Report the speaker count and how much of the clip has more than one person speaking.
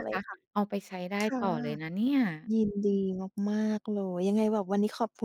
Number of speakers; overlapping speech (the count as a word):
two, about 10%